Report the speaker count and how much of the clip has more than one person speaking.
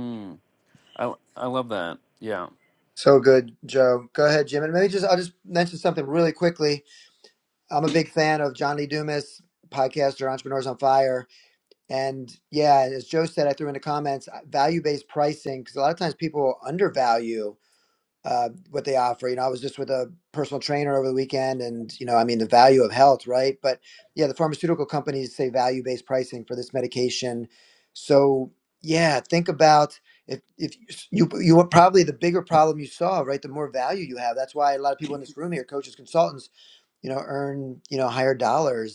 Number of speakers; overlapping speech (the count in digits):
2, no overlap